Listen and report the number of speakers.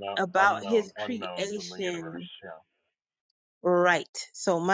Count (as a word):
two